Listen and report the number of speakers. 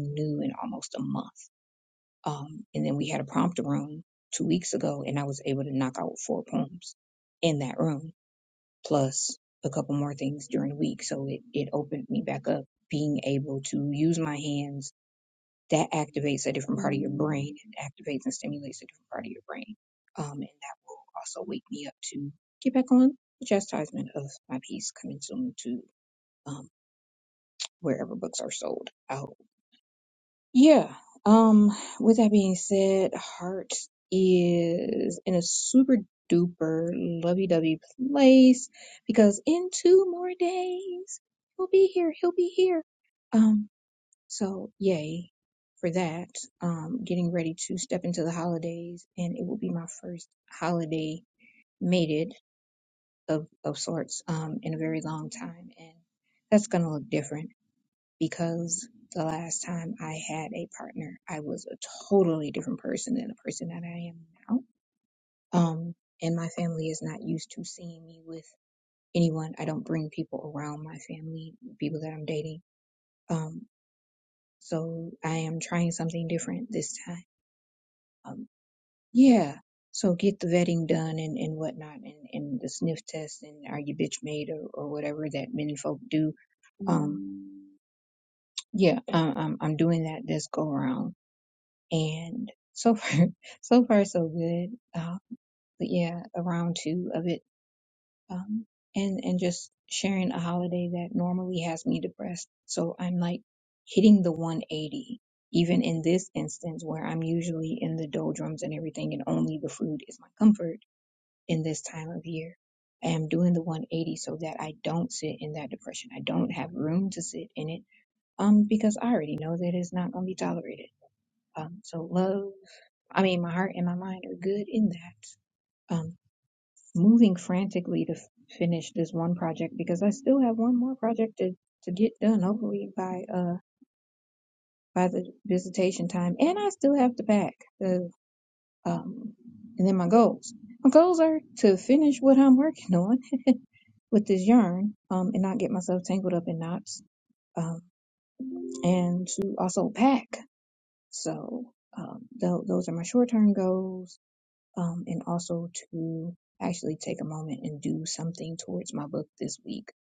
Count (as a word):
one